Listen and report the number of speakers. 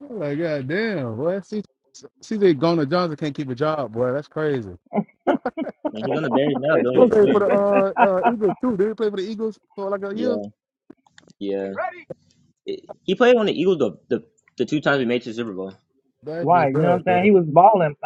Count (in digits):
3